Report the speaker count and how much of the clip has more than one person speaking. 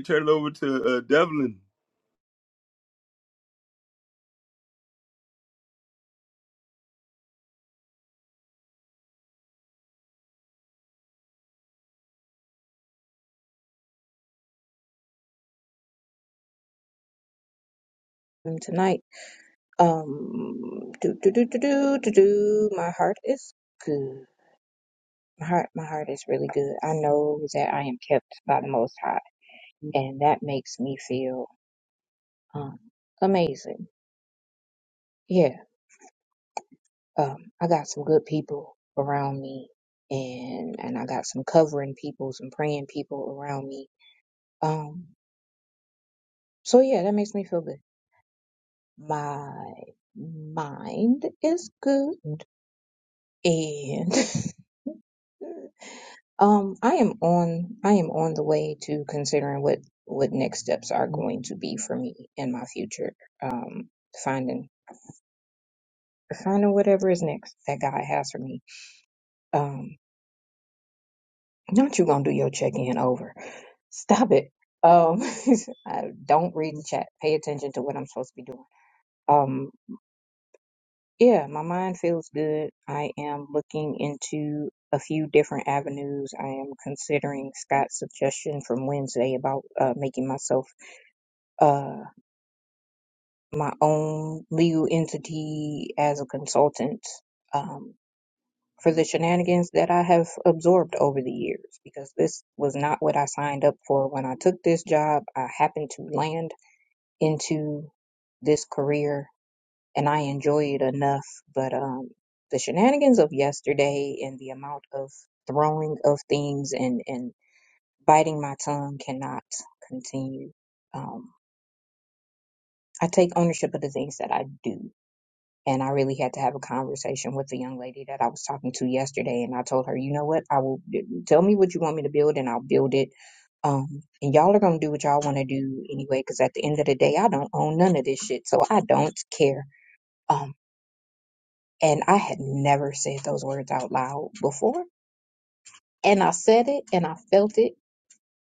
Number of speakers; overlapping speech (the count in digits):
2, no overlap